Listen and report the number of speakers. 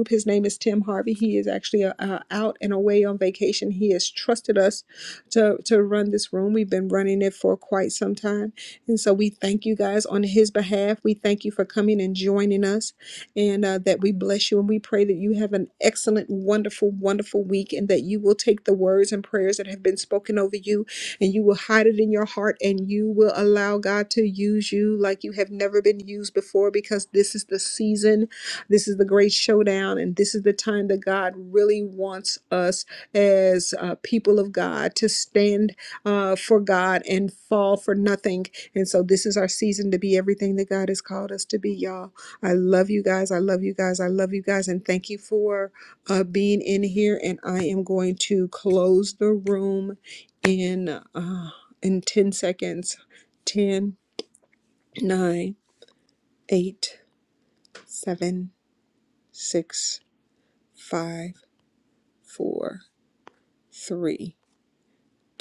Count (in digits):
1